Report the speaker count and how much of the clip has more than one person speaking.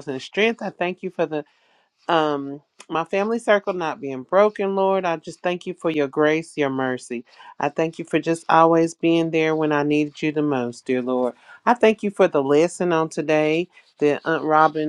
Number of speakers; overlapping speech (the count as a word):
one, no overlap